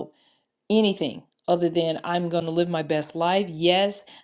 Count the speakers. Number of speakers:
one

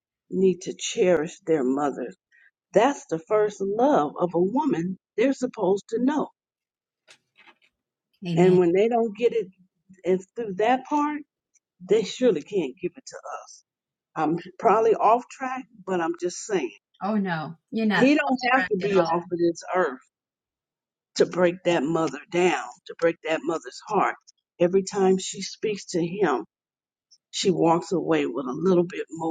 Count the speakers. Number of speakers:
two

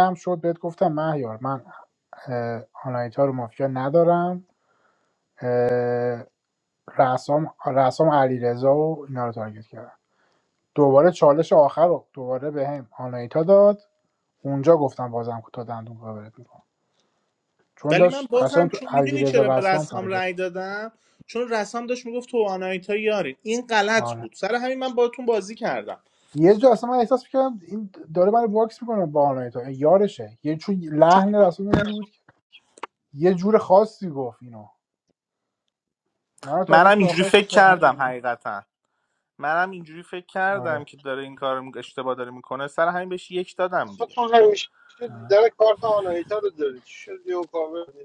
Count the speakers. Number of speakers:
three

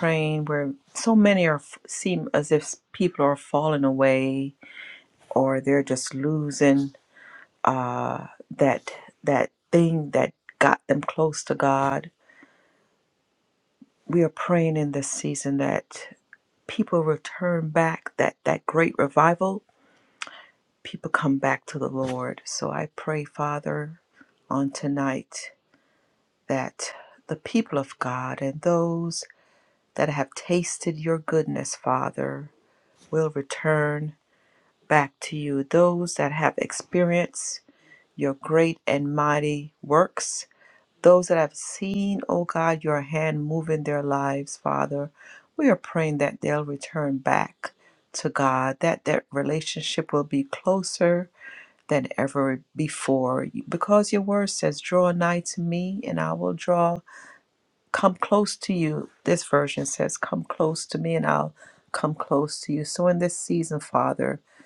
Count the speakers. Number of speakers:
one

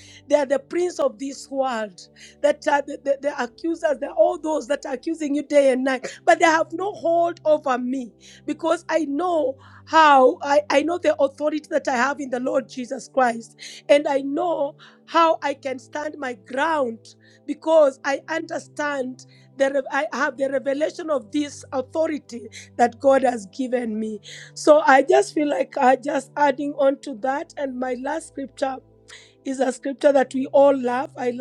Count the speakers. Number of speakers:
one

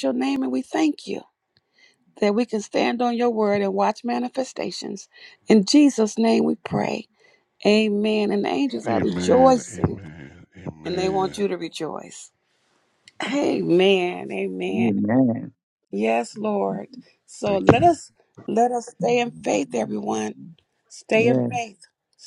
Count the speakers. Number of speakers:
three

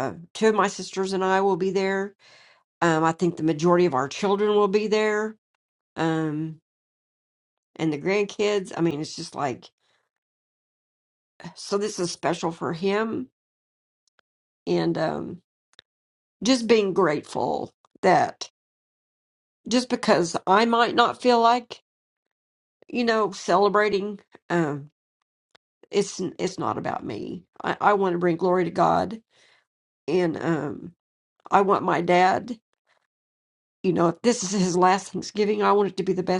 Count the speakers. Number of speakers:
one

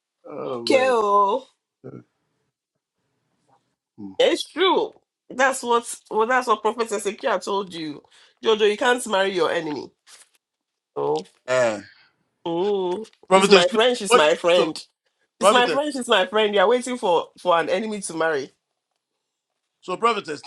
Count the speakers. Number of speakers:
two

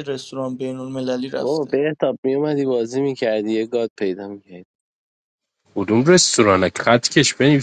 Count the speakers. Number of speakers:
three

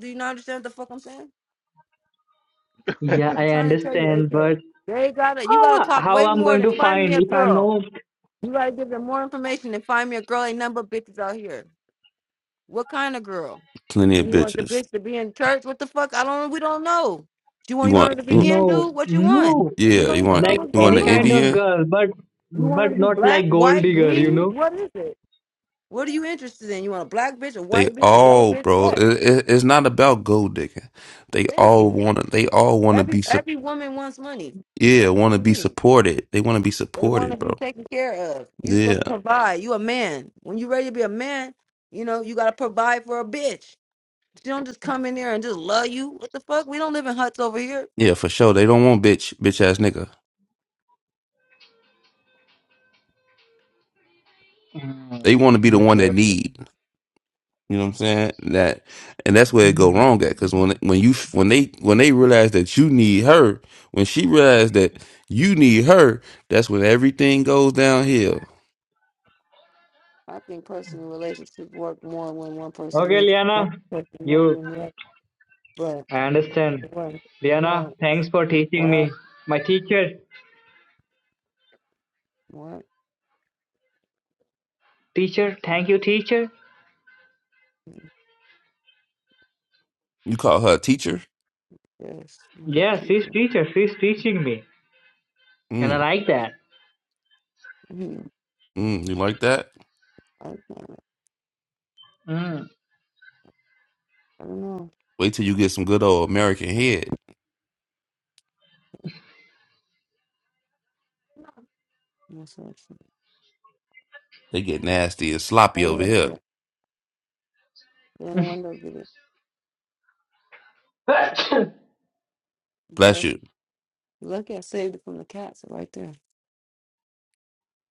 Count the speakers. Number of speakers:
three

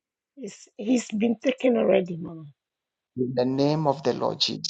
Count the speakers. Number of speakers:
two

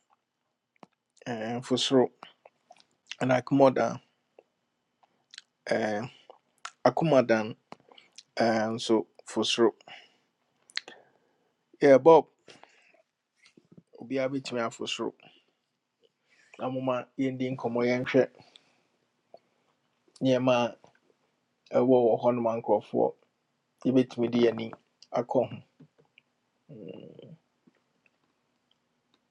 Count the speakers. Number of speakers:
one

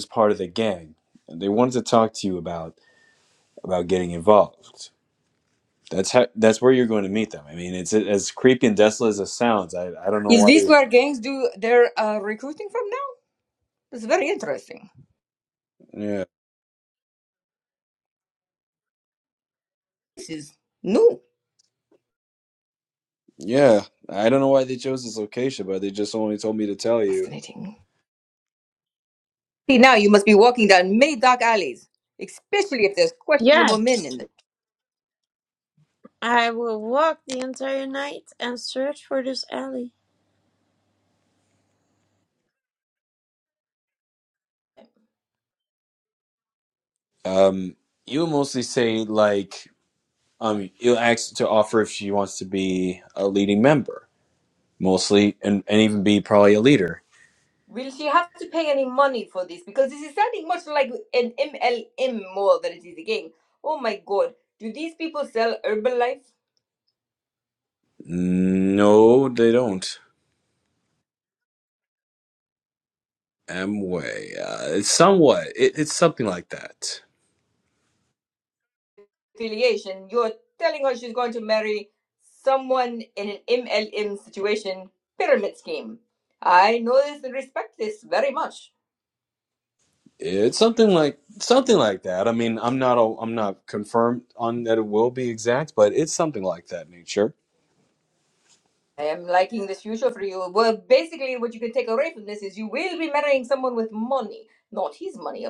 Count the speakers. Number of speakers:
three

